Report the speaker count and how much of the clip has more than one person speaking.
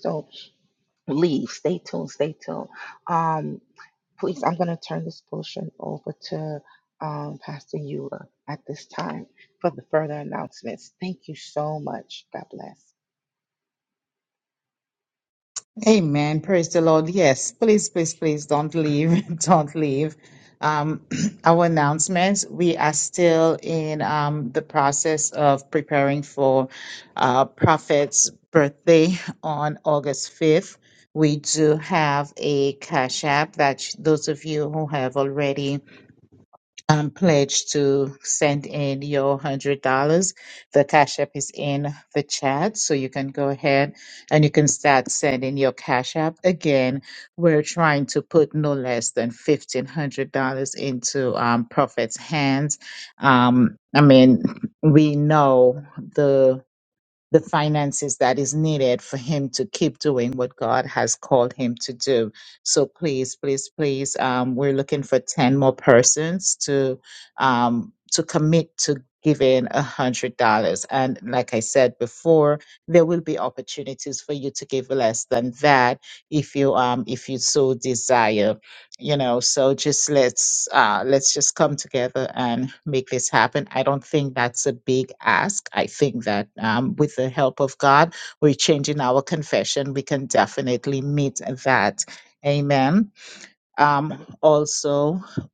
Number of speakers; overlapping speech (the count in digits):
2, no overlap